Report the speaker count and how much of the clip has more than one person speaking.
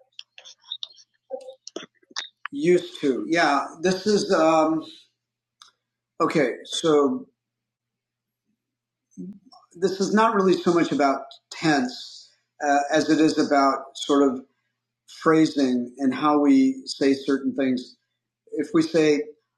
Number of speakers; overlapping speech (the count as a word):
one, no overlap